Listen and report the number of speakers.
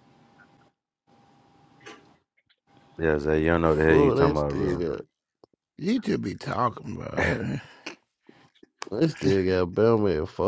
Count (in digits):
3